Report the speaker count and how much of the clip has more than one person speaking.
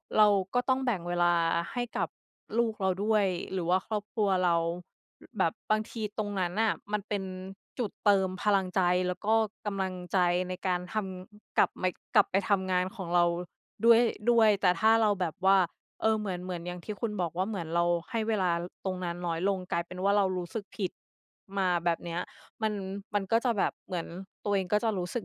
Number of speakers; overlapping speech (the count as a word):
one, no overlap